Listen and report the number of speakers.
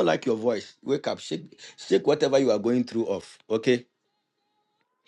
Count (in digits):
1